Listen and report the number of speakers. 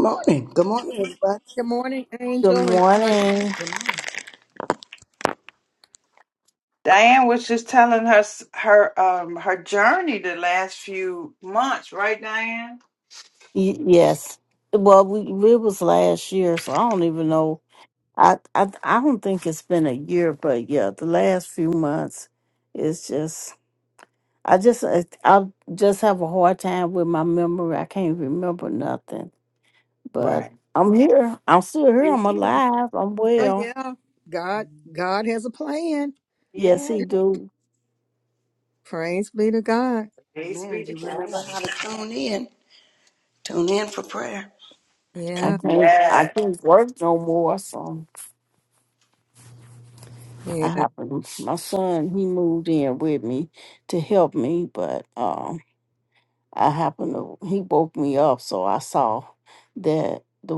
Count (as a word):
four